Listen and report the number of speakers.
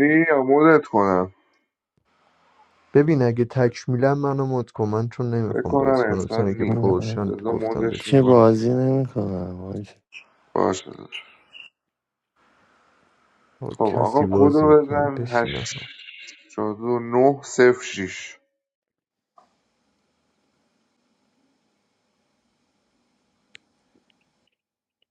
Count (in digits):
3